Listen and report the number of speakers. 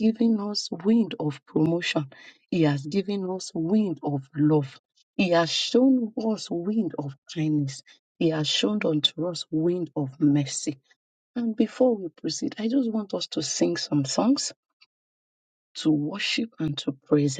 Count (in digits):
1